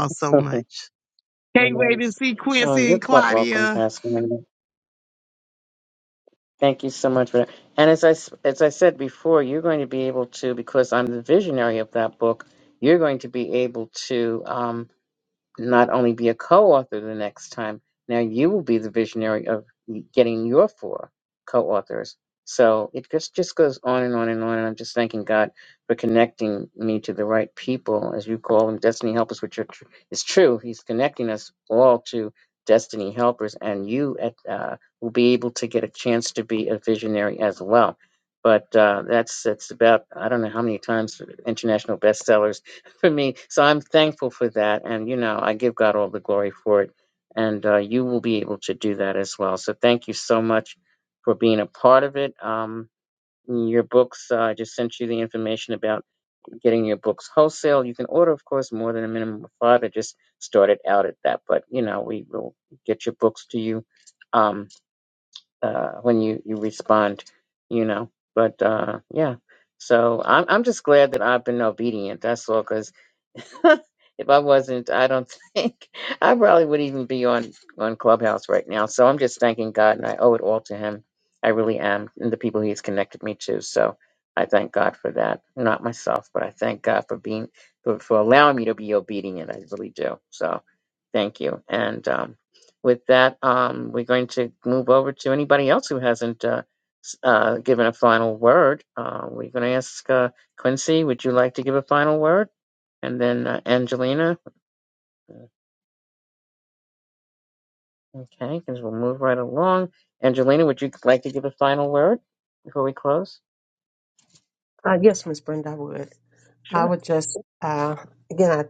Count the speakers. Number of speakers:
3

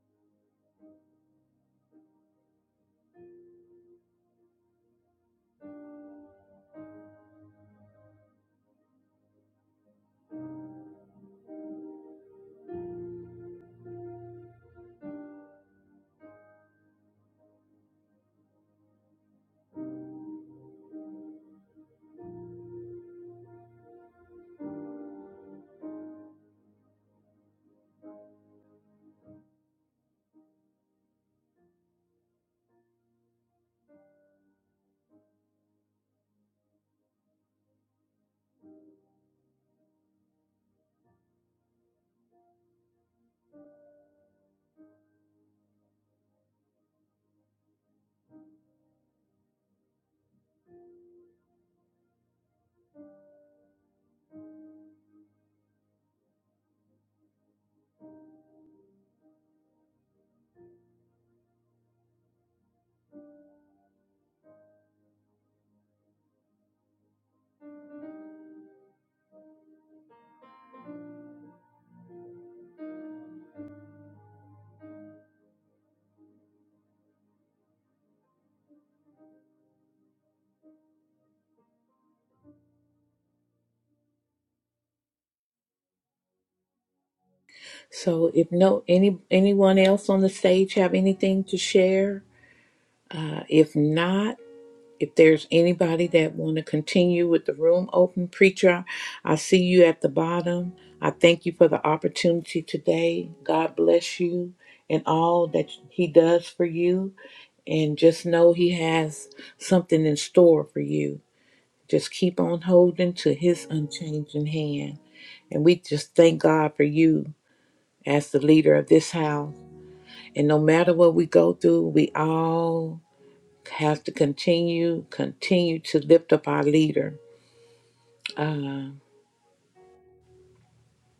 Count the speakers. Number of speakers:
1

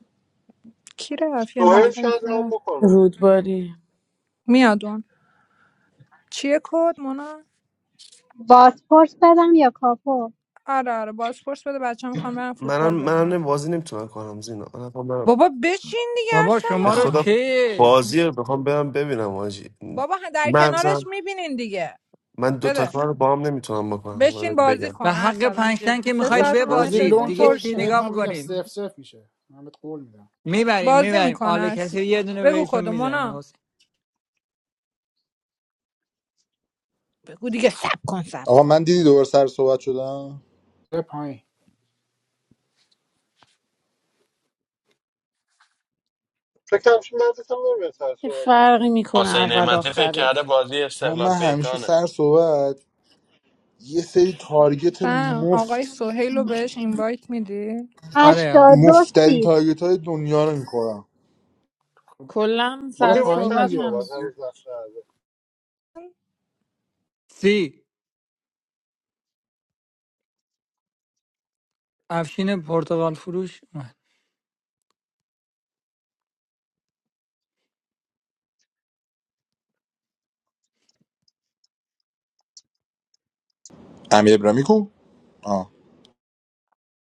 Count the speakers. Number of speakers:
9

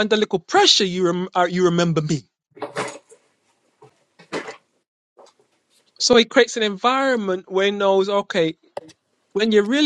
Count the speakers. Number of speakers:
1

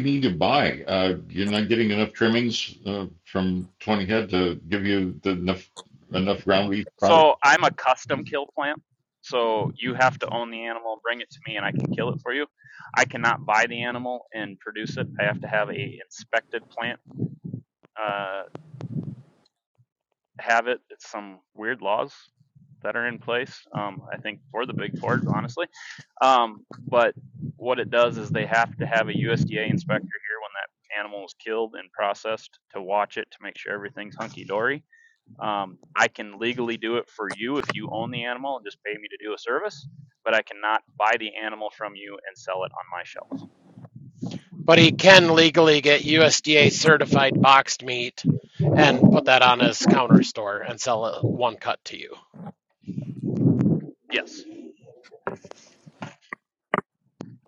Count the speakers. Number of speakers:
3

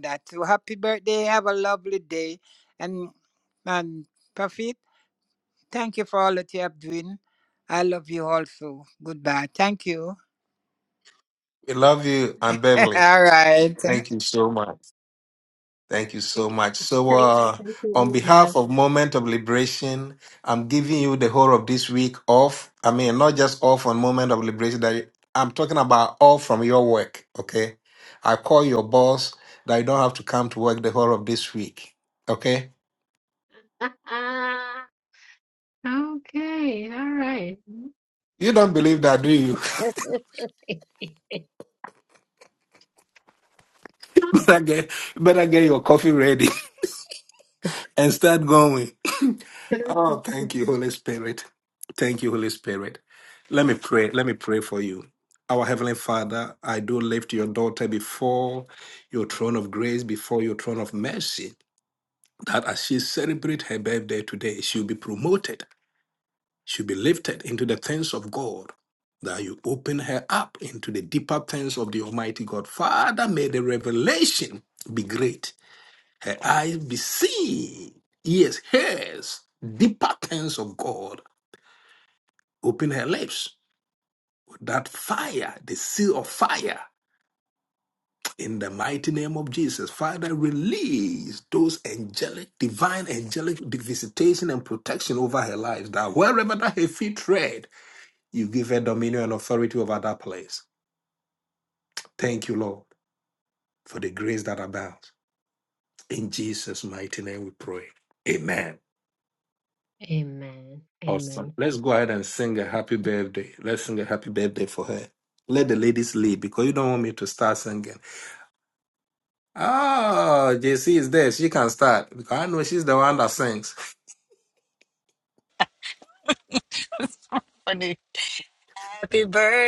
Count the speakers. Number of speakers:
4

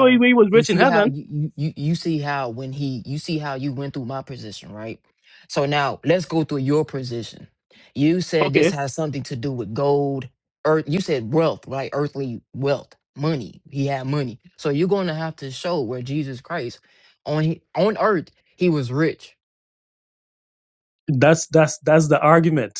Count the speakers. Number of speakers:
2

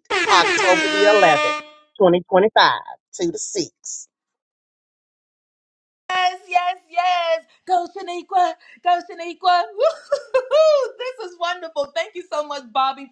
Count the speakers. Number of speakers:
2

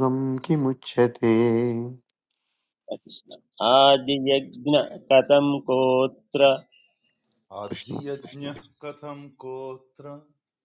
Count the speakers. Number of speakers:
3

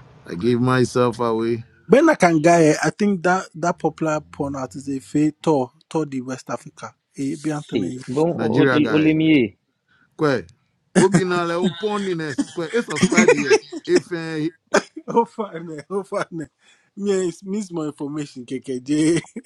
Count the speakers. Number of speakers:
3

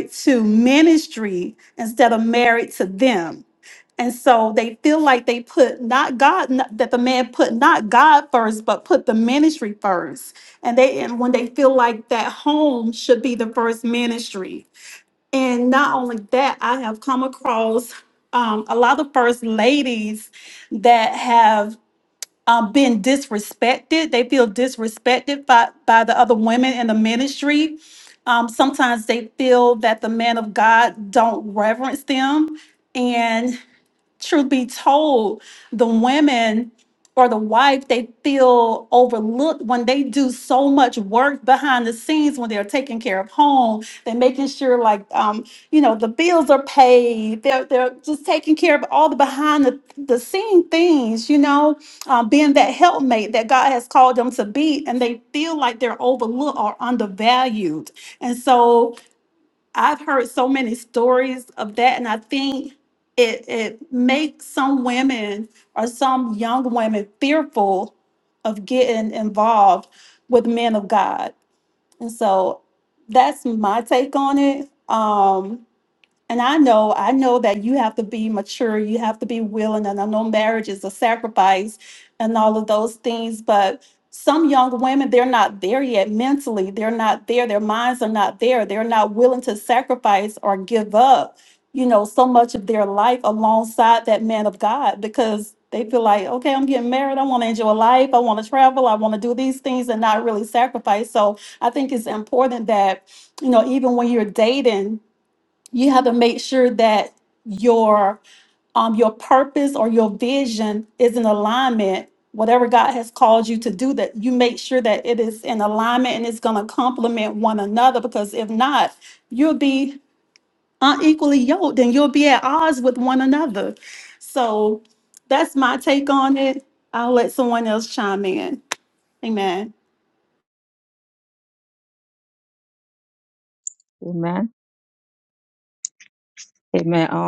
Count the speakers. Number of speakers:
2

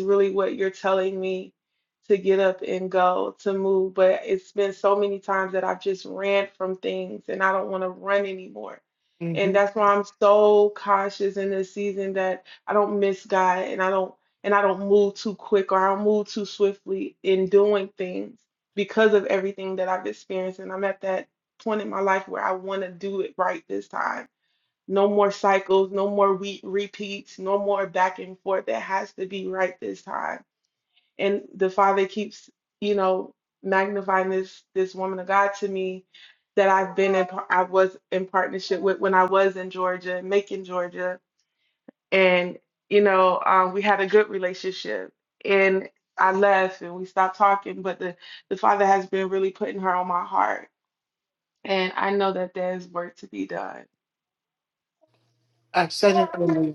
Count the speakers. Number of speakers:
2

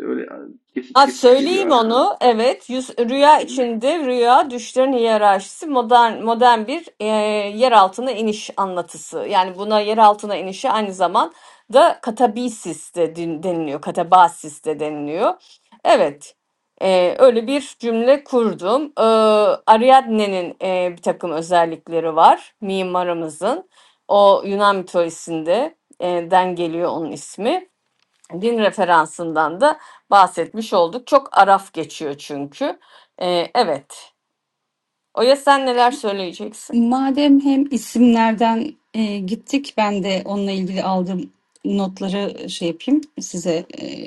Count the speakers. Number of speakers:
3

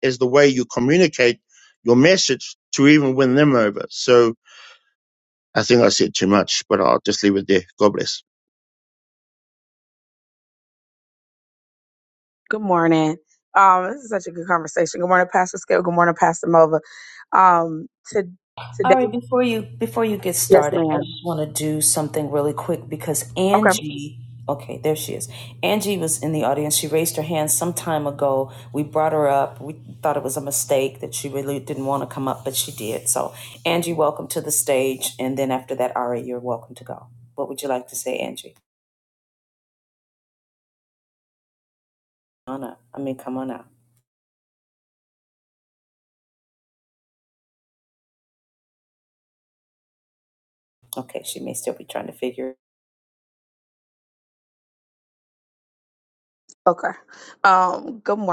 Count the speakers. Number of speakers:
3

